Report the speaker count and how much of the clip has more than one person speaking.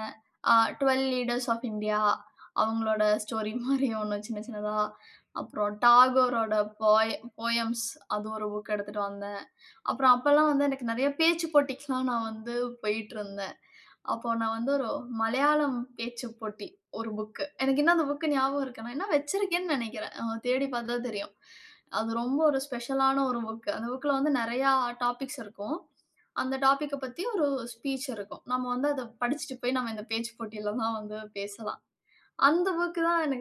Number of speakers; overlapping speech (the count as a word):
one, no overlap